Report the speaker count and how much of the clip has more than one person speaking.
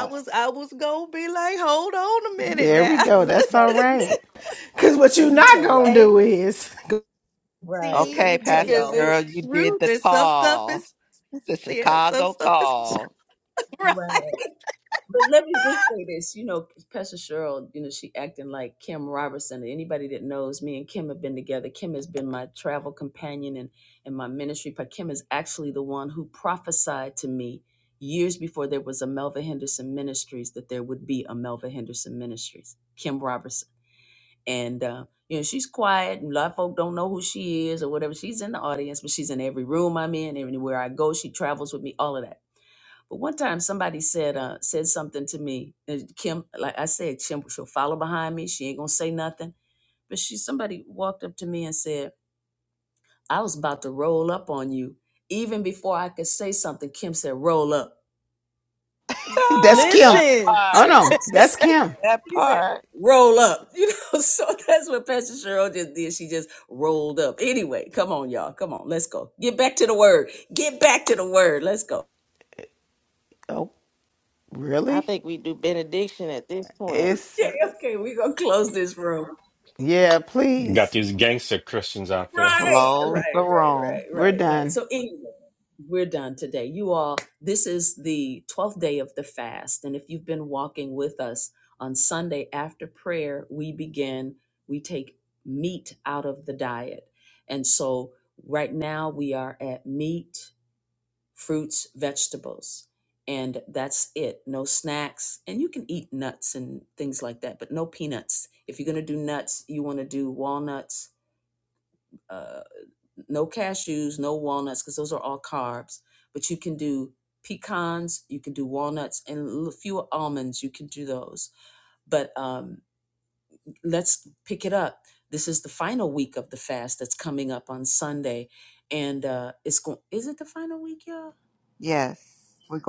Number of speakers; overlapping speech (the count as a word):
seven, about 9%